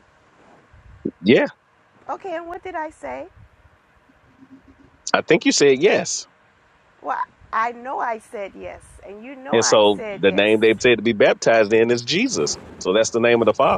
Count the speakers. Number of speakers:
2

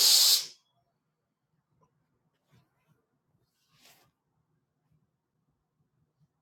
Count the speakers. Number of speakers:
0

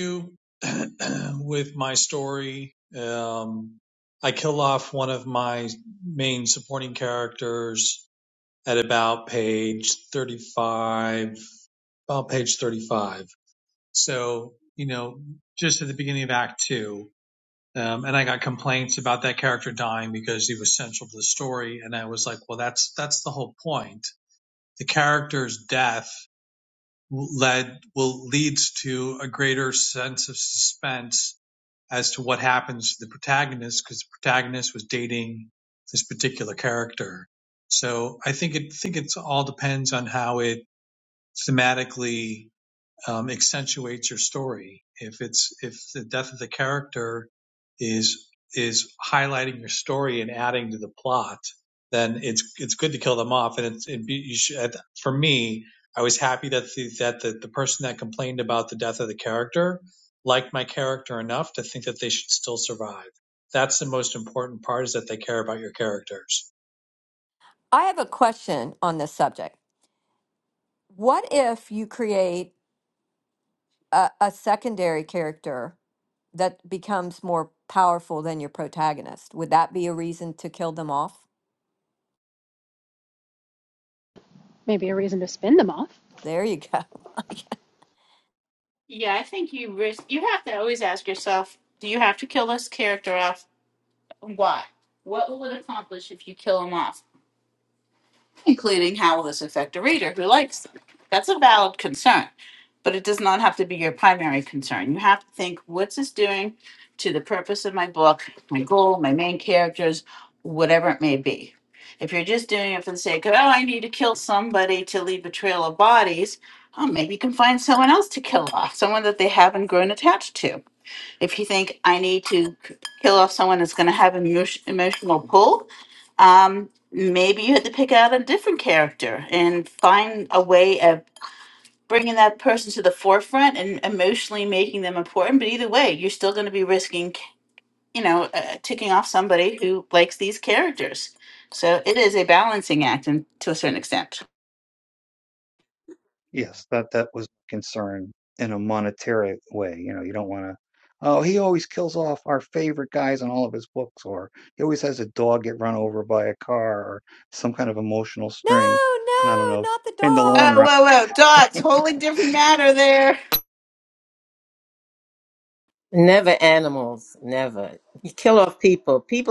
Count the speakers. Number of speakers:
6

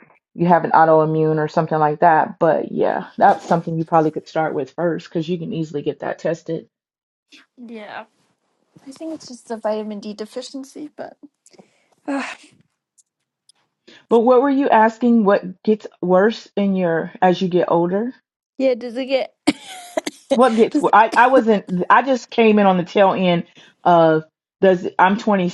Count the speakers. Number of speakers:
2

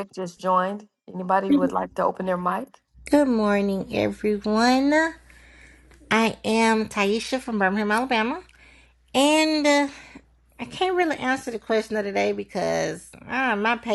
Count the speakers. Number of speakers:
2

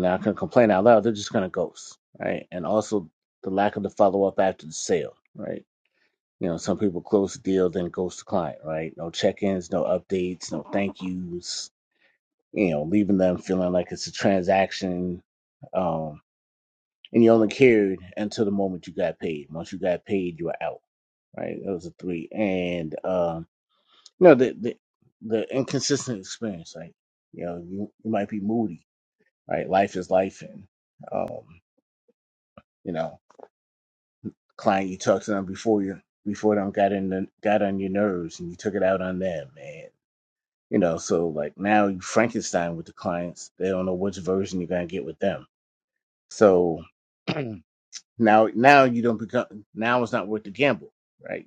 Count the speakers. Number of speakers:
1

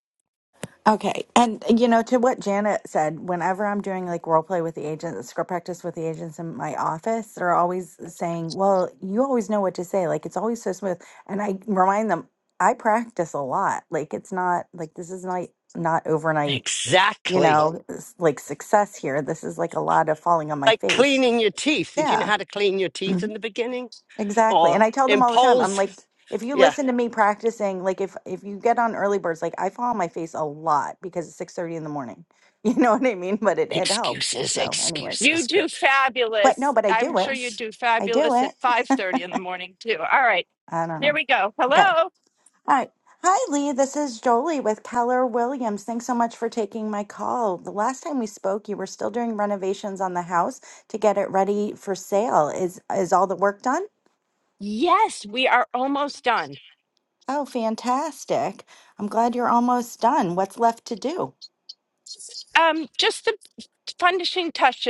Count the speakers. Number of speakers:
3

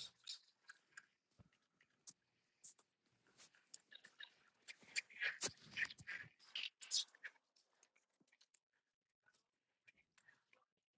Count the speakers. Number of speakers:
0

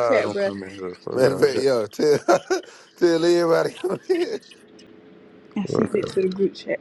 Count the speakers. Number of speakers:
3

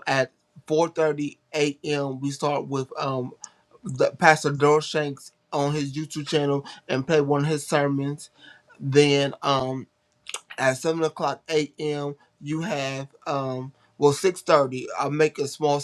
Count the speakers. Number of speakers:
1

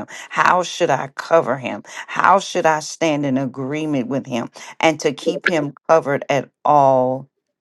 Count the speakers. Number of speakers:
1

